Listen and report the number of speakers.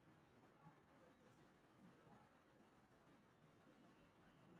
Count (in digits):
0